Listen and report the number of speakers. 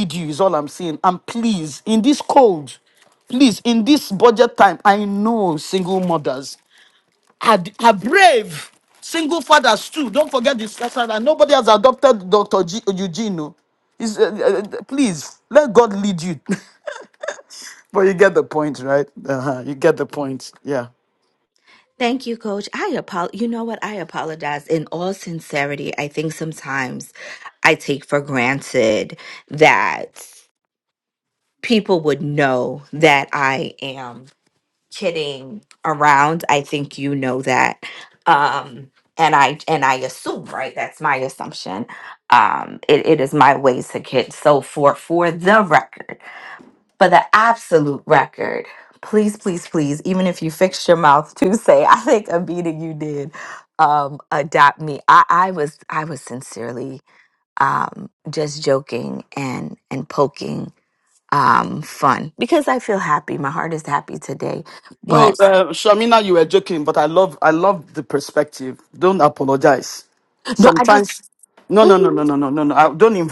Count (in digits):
2